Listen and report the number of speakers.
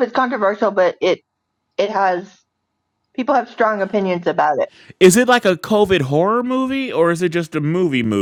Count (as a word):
two